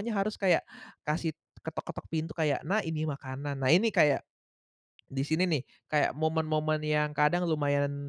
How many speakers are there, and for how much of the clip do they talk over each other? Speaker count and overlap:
1, no overlap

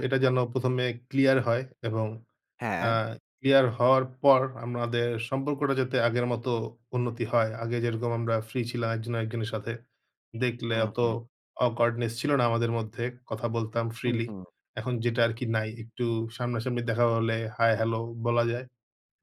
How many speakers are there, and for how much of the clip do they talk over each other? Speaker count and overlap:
2, about 4%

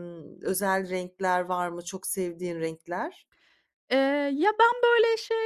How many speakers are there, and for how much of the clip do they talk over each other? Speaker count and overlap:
2, no overlap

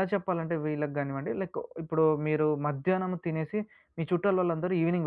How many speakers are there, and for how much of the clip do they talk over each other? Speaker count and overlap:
1, no overlap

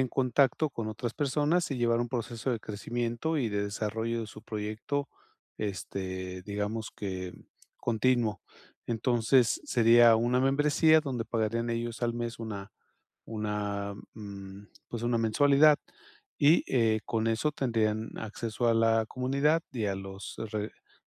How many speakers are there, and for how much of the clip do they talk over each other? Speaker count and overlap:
1, no overlap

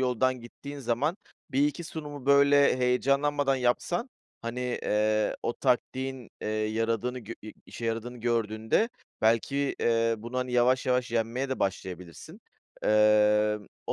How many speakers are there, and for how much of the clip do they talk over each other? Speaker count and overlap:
1, no overlap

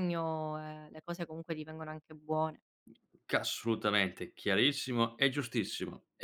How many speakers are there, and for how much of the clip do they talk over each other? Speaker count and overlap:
2, no overlap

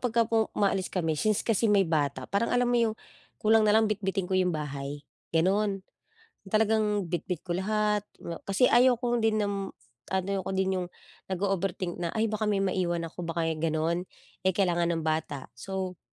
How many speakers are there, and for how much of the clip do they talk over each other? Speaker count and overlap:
1, no overlap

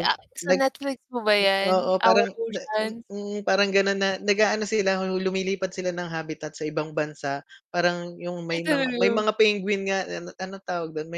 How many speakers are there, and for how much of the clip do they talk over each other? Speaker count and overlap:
2, about 12%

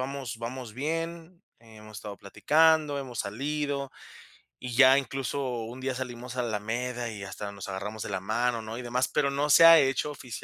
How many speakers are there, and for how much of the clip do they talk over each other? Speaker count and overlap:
1, no overlap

